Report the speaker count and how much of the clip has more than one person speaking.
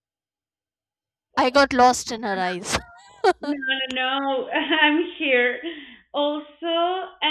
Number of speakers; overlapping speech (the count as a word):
two, no overlap